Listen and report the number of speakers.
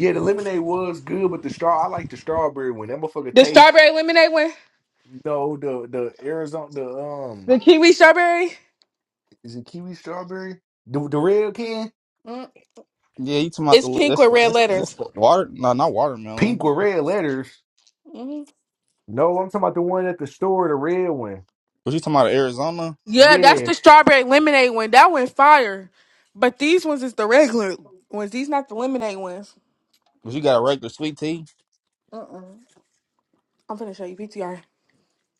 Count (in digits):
3